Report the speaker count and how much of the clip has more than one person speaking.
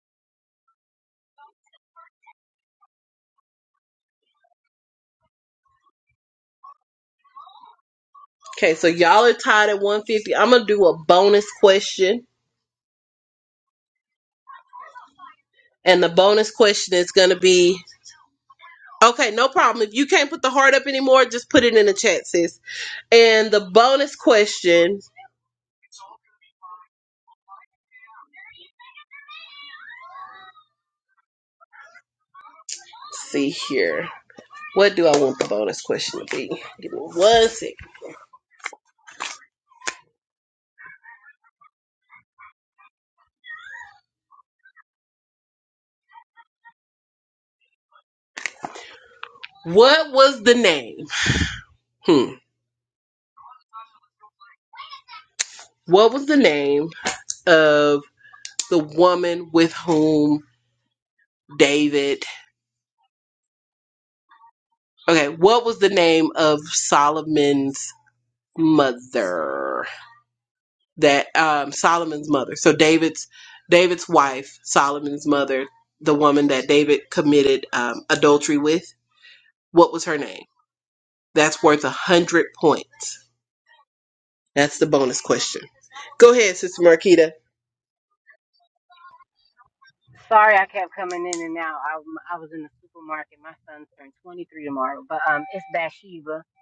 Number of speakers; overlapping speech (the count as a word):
two, no overlap